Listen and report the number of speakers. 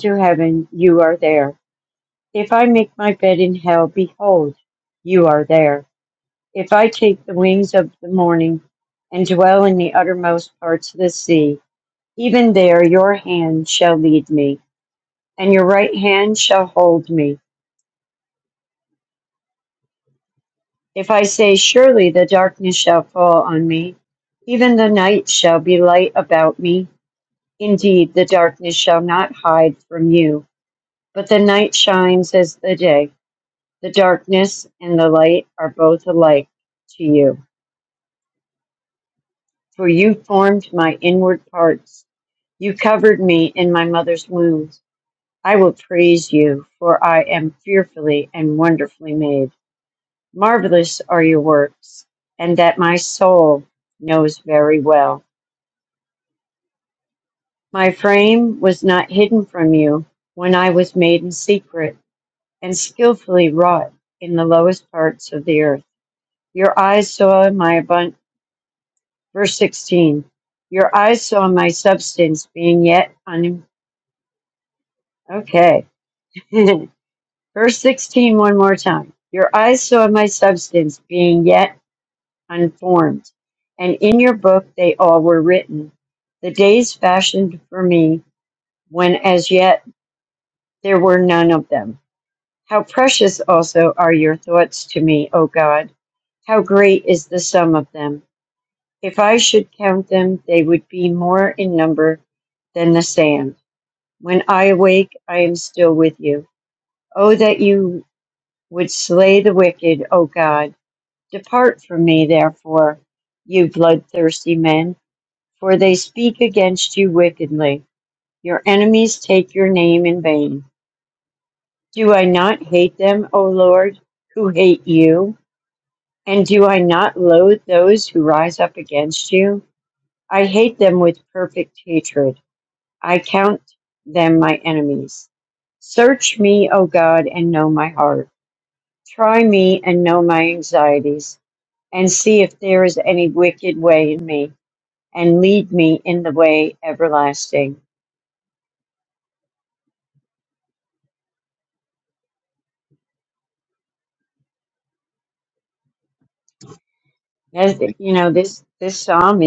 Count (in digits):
1